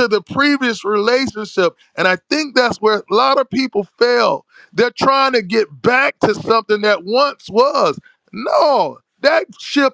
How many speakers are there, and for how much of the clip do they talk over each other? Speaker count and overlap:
1, no overlap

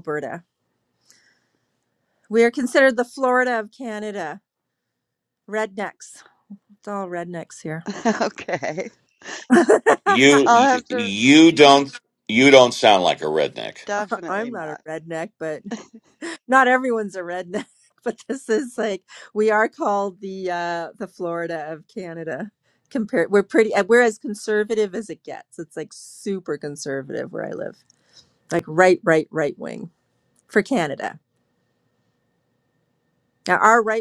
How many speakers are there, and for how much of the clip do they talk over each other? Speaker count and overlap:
3, about 3%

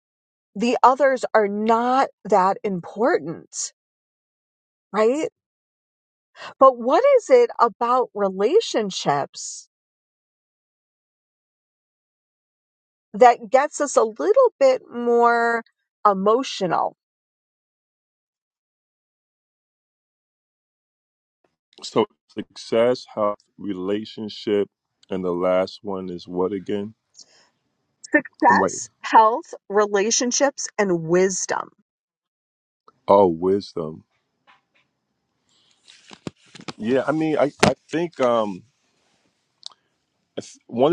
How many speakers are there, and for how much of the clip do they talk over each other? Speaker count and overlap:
2, under 1%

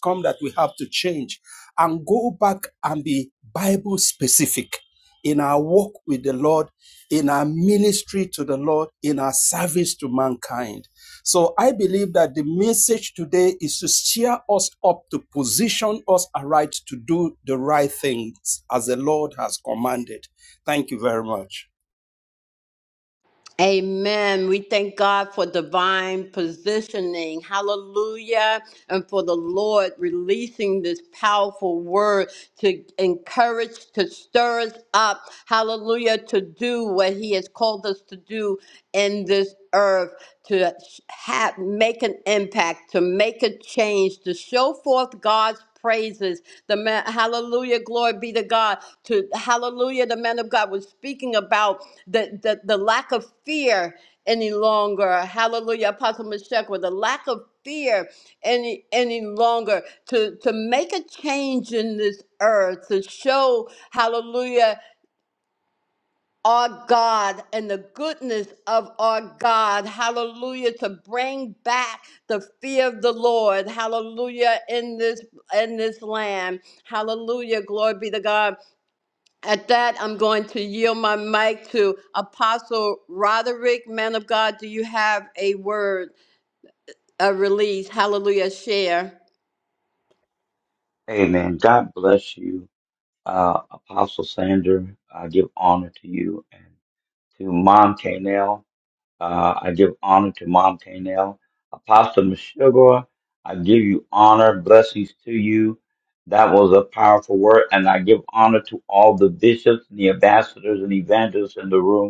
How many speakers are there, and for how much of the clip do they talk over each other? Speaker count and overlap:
3, no overlap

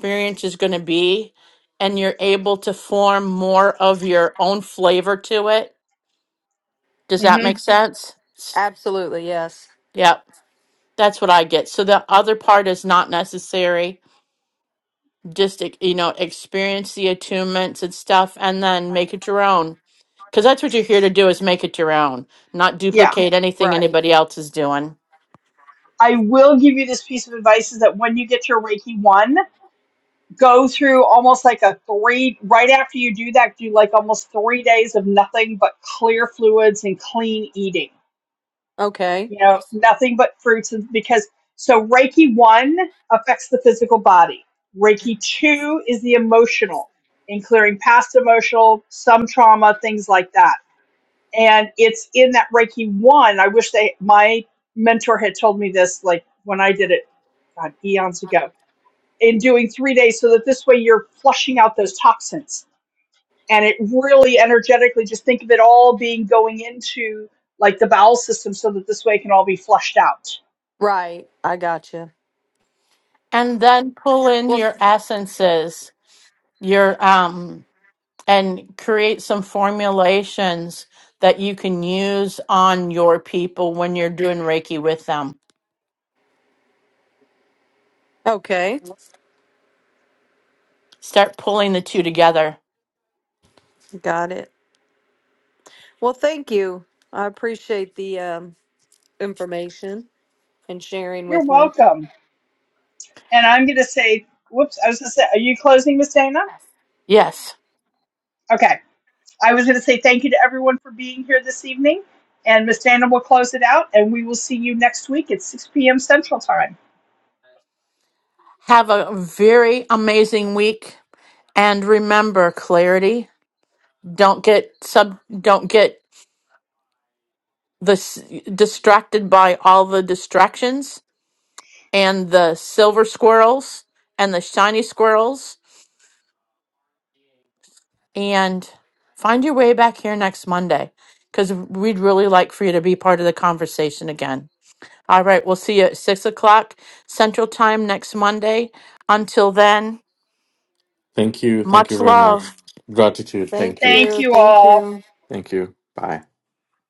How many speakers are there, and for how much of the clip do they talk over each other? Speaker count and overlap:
4, about 2%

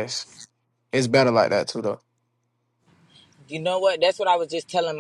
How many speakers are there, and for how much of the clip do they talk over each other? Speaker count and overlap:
2, no overlap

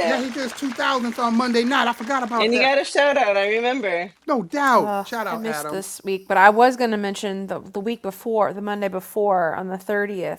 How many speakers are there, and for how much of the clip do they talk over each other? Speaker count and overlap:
3, about 16%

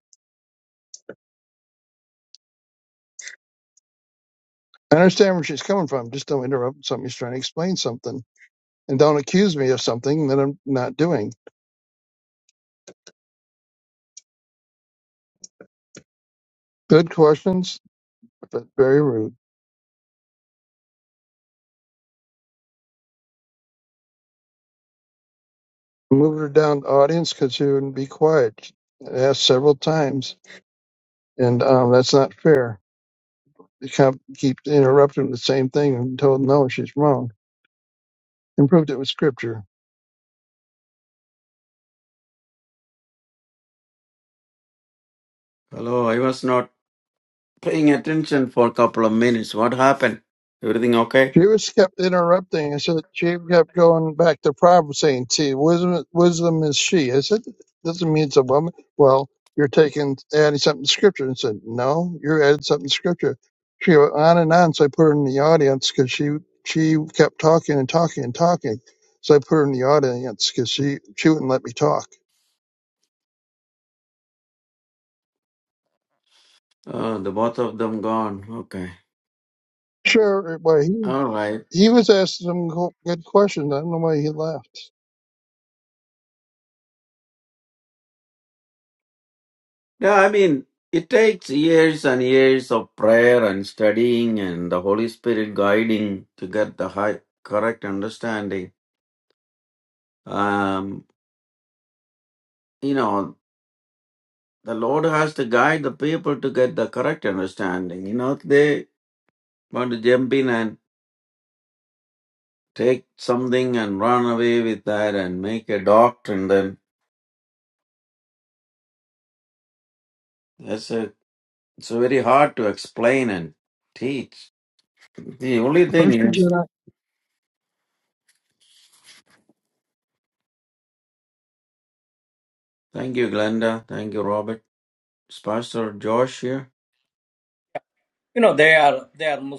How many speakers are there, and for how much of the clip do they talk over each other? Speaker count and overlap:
3, under 1%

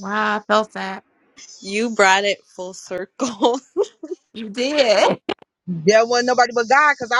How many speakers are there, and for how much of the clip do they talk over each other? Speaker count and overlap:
3, no overlap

